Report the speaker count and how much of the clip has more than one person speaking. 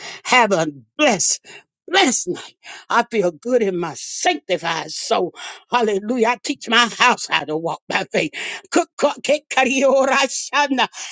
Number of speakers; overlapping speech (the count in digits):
1, no overlap